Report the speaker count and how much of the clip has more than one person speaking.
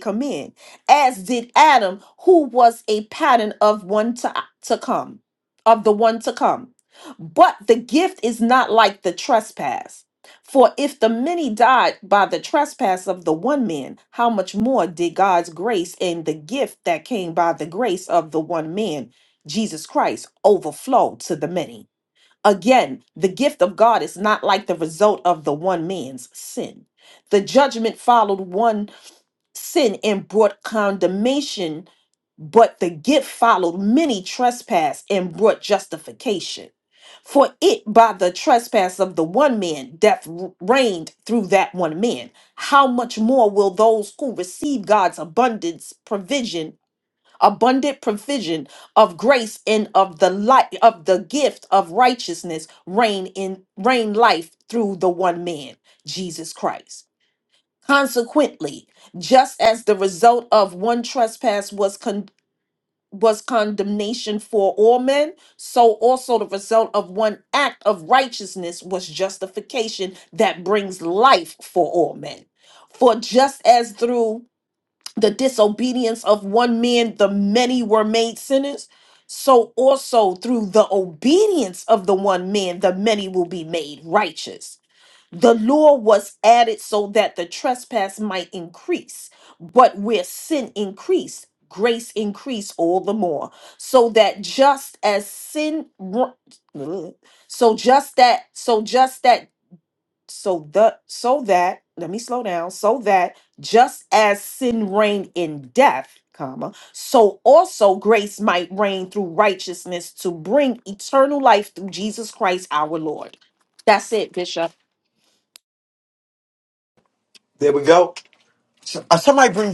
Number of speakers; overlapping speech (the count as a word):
two, no overlap